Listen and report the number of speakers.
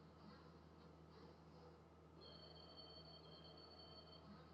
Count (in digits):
0